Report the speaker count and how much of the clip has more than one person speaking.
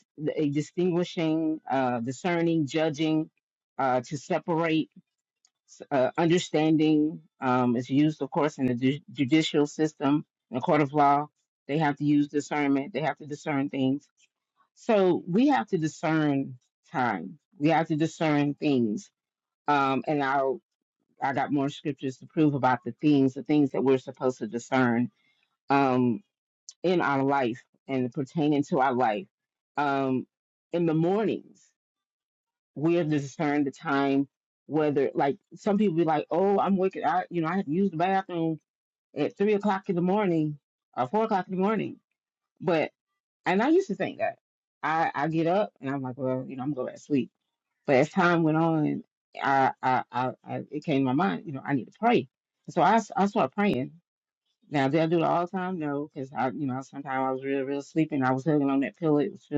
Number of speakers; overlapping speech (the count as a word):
one, no overlap